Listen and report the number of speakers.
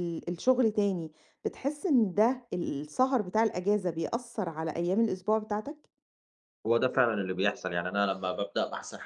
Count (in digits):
2